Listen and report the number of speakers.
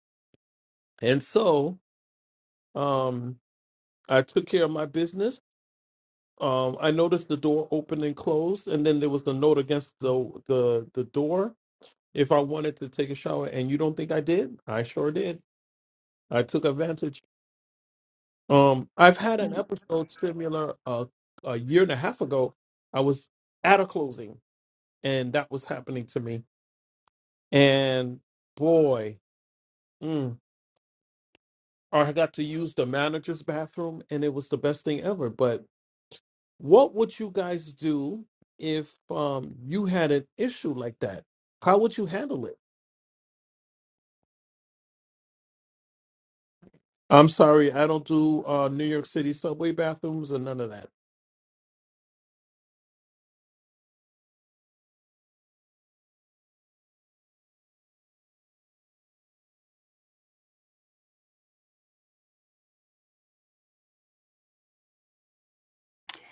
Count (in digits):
1